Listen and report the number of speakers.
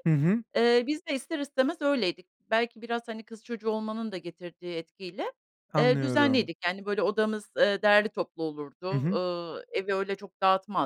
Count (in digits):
2